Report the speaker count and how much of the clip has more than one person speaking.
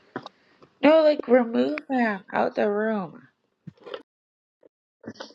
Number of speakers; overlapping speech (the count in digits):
1, no overlap